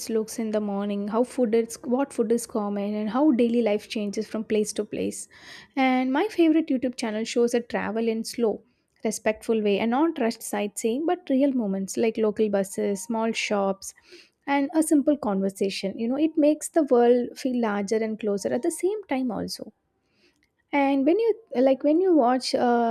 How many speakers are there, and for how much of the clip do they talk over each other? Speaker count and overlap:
one, no overlap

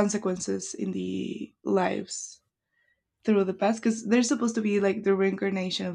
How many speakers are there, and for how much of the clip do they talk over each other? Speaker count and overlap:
one, no overlap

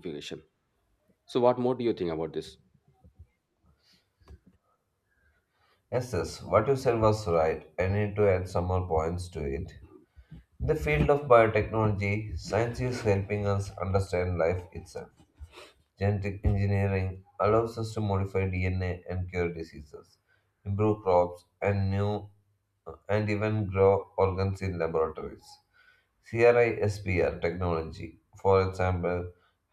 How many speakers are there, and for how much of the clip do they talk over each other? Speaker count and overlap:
two, no overlap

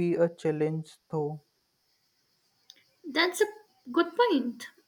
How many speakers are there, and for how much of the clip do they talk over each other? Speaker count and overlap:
two, no overlap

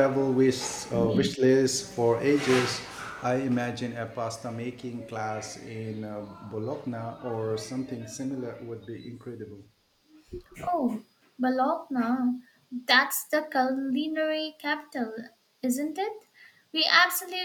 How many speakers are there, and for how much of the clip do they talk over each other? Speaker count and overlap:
two, no overlap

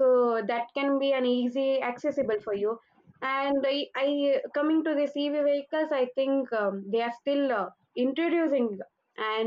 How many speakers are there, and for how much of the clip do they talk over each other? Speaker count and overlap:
one, no overlap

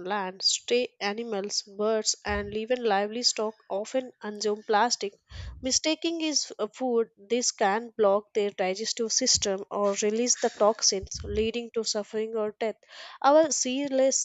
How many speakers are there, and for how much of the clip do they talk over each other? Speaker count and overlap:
one, no overlap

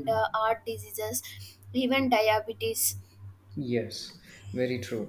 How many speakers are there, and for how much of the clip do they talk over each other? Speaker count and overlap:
two, no overlap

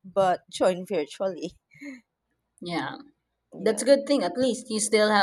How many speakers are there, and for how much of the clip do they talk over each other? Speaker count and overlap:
two, about 5%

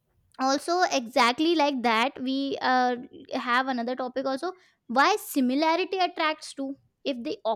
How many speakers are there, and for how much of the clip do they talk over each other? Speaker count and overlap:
one, no overlap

